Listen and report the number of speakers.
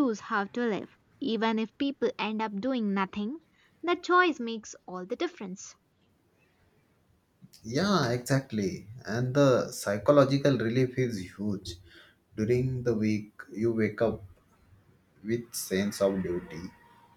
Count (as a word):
two